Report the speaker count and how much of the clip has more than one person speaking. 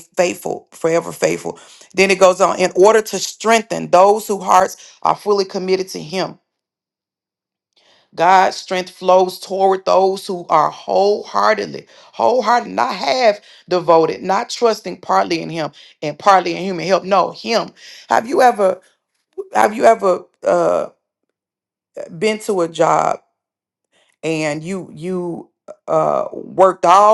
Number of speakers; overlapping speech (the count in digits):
1, no overlap